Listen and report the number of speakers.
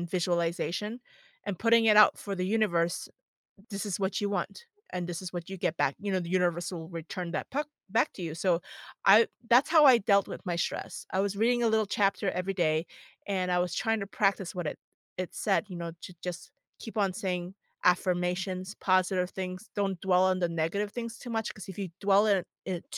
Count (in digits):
1